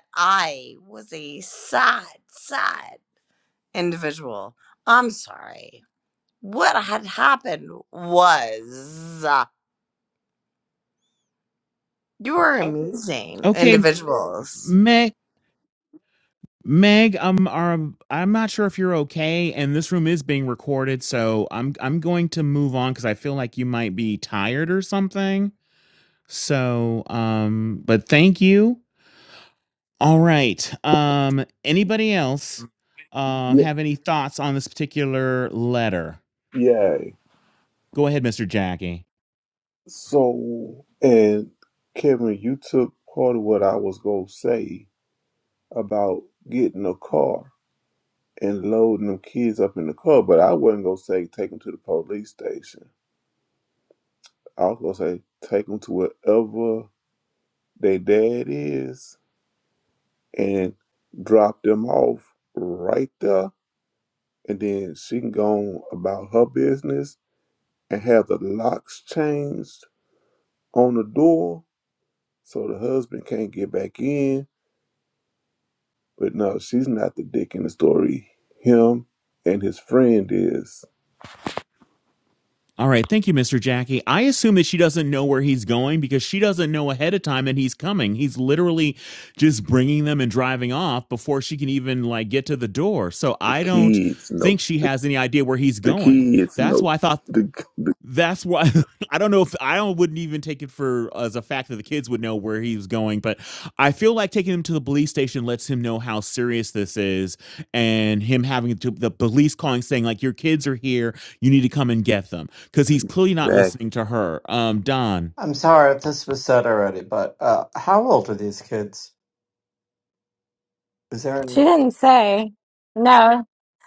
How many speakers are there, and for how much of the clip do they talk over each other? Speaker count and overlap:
five, about 2%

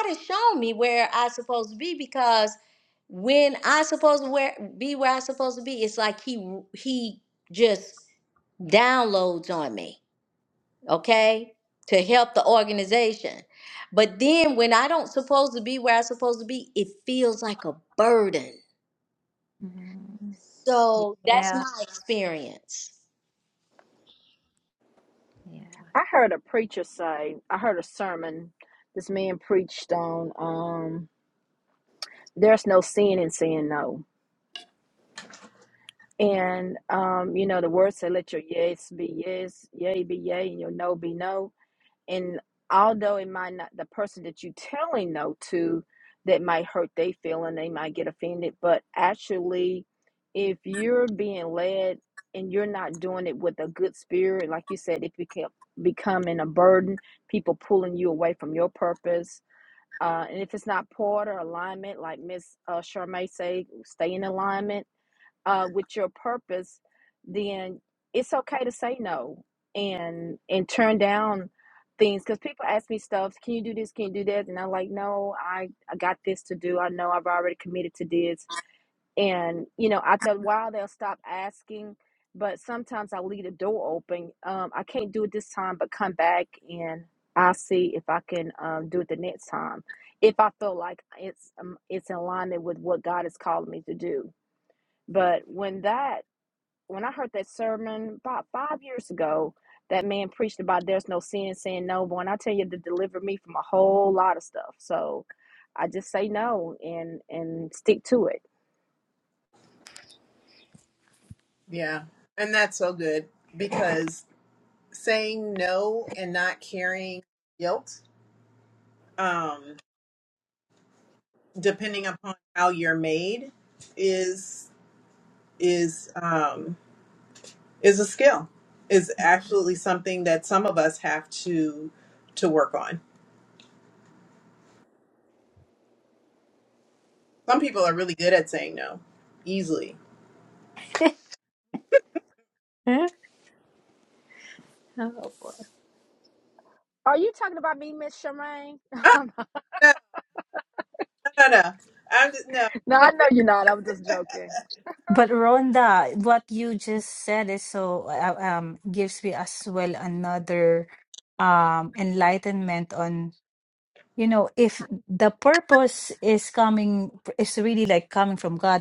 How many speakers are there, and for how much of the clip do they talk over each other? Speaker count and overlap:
five, under 1%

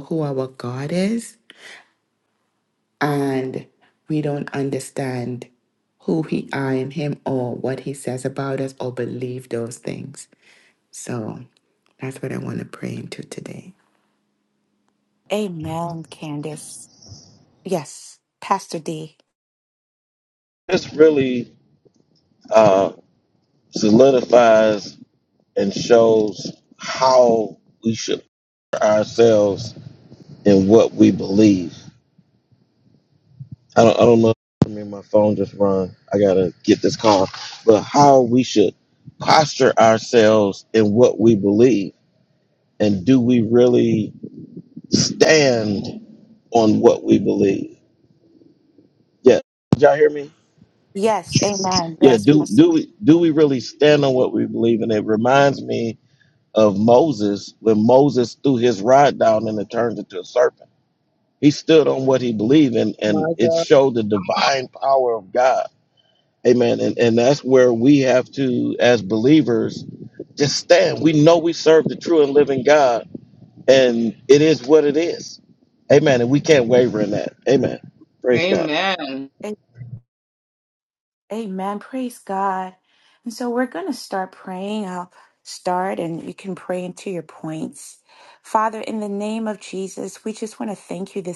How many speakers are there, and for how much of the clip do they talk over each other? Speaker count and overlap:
four, about 2%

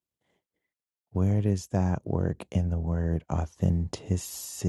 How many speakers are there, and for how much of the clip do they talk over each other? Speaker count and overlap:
one, no overlap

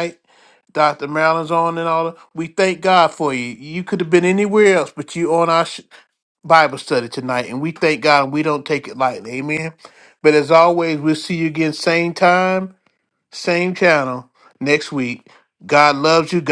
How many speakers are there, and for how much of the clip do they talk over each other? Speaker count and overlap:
one, no overlap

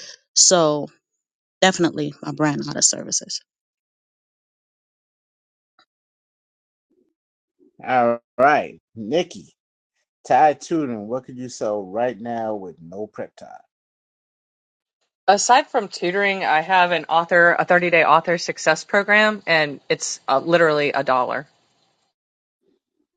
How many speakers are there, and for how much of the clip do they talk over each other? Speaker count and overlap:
three, no overlap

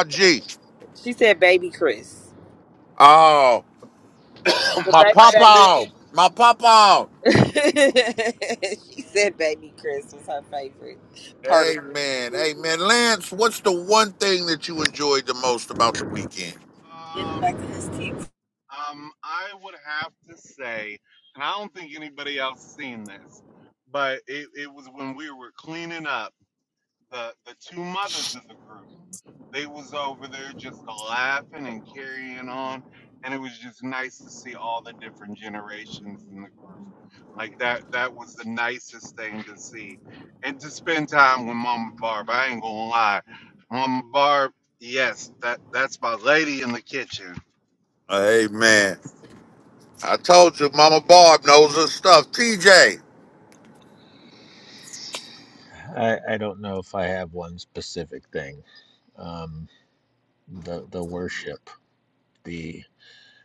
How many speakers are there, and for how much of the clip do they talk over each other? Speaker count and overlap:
four, about 3%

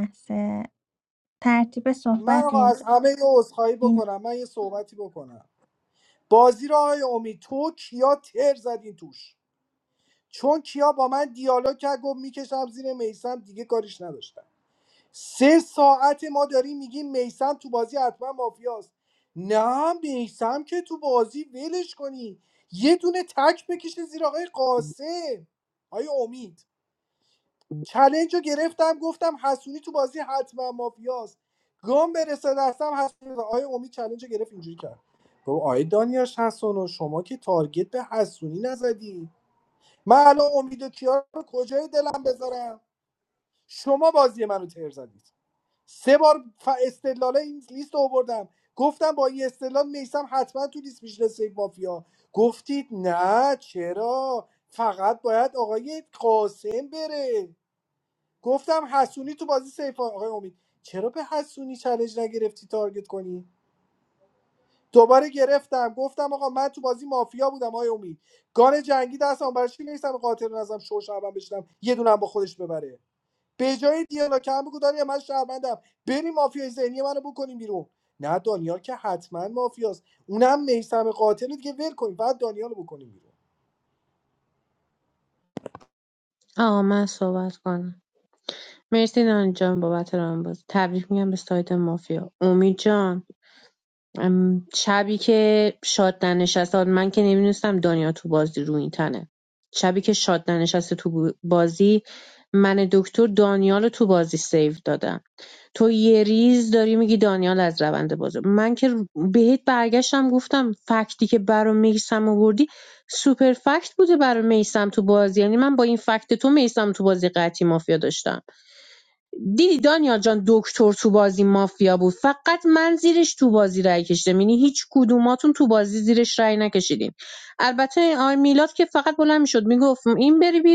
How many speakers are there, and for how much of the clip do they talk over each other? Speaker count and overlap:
three, about 1%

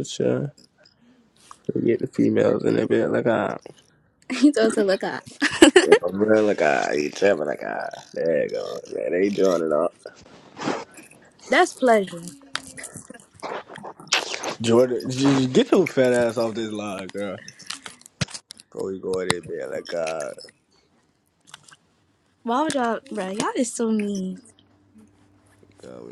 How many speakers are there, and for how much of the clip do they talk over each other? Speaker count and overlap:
two, no overlap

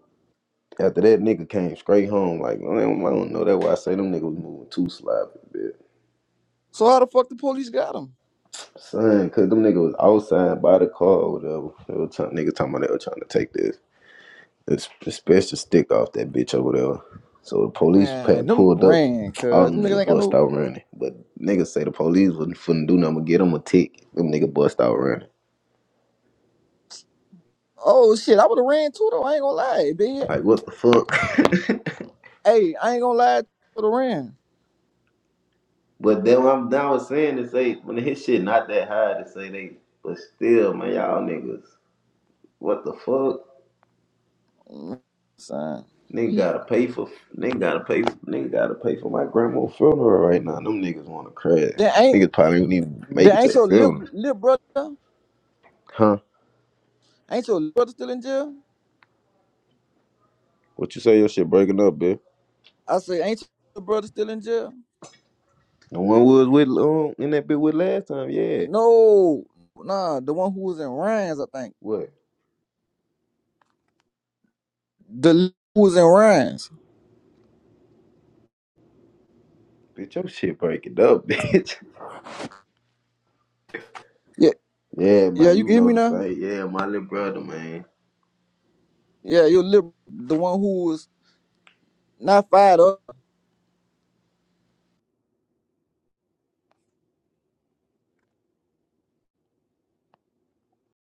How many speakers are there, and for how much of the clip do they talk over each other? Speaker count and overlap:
two, about 4%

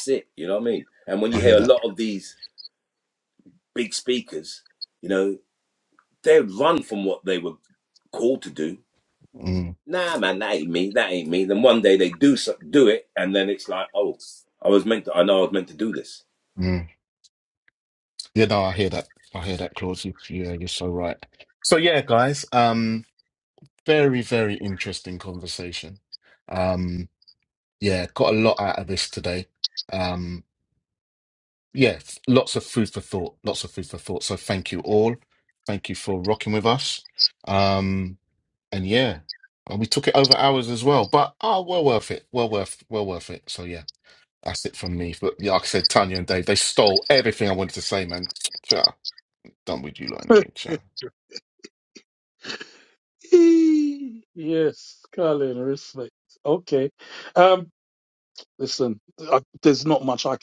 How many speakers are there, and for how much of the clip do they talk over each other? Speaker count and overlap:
three, about 1%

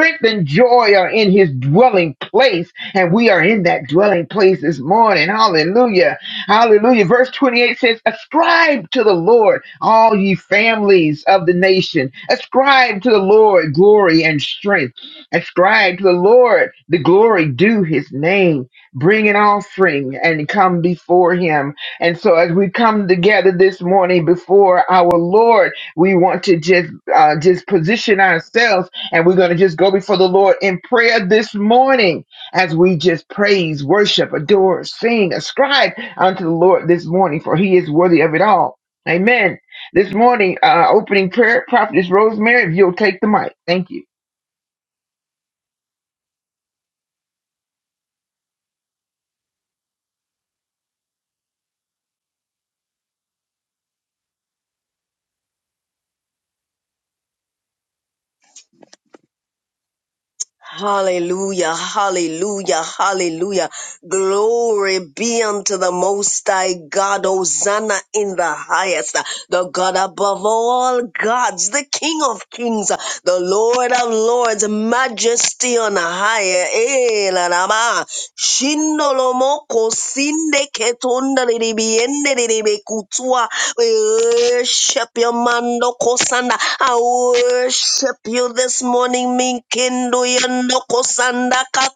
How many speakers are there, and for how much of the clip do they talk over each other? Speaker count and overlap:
two, no overlap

